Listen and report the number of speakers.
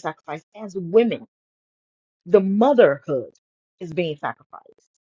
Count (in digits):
1